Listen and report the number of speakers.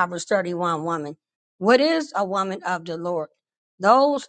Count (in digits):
1